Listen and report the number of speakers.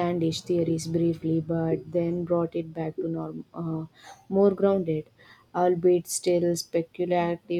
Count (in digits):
1